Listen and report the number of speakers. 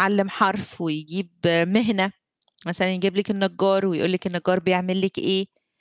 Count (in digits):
1